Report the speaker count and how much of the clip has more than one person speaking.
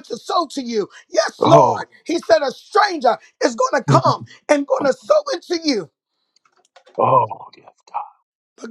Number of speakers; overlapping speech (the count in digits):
2, about 8%